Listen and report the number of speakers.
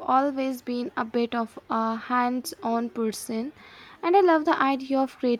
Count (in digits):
1